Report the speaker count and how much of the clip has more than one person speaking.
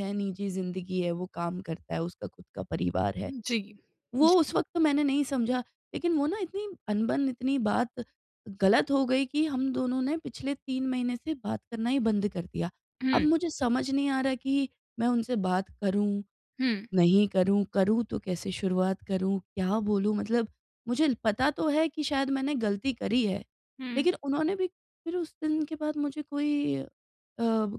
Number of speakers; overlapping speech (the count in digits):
2, about 2%